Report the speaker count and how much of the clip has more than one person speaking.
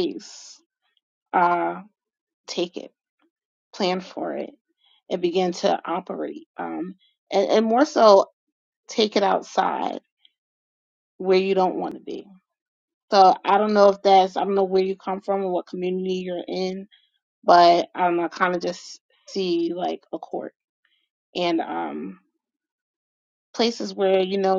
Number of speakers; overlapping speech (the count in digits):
1, no overlap